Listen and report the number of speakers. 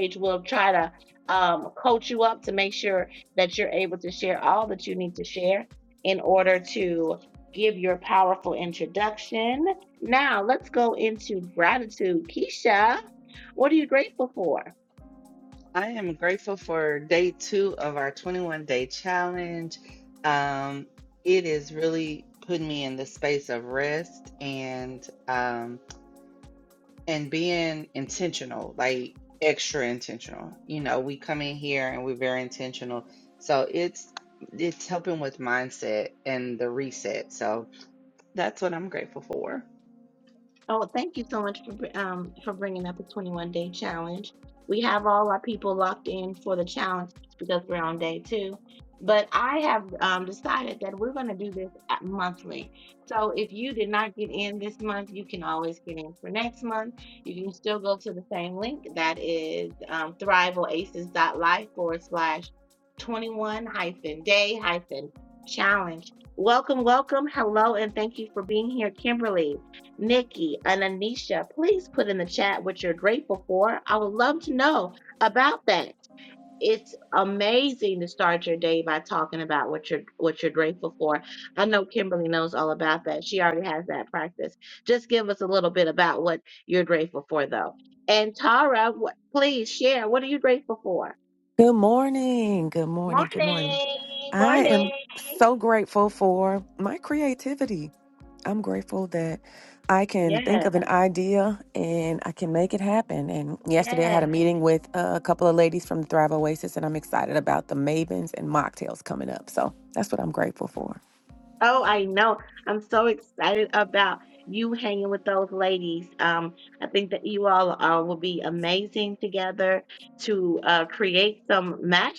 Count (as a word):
three